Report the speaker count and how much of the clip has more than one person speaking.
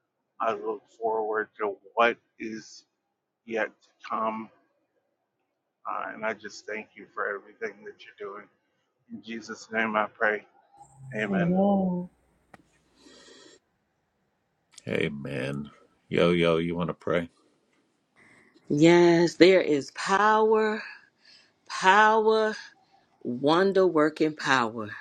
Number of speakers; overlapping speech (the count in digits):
3, no overlap